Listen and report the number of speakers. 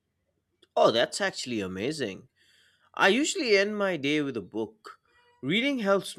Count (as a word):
one